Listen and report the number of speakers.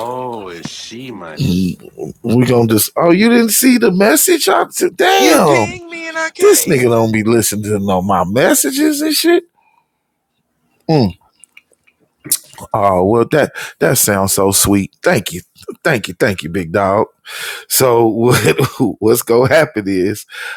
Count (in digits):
3